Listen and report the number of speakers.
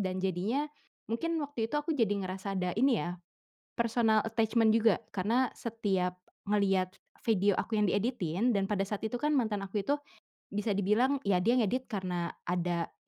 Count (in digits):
1